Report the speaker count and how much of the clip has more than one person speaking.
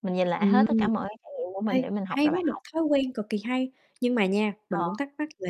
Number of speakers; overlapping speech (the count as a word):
two, about 27%